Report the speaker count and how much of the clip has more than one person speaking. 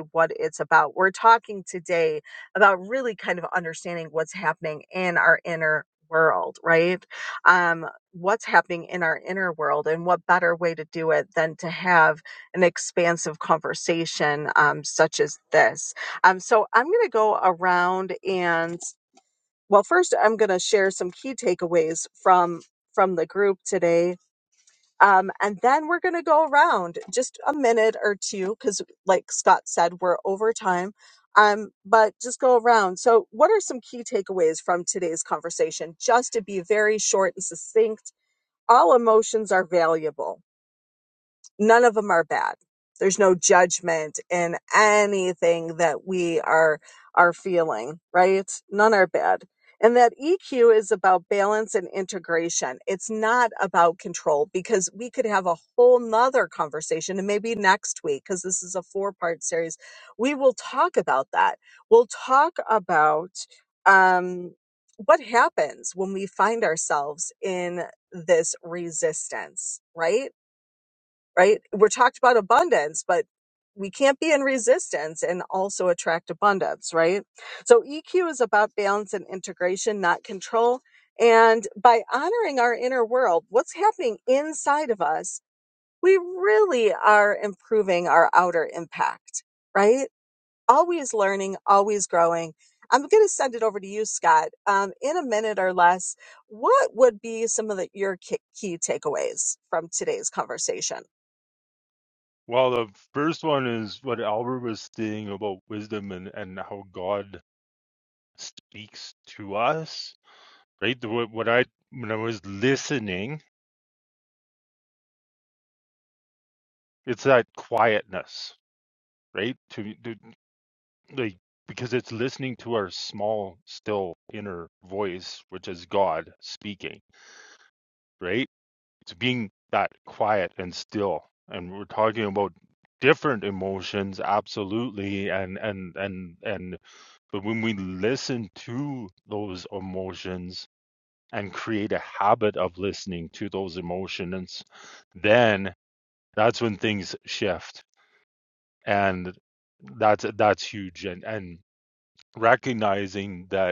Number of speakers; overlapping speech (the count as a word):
two, no overlap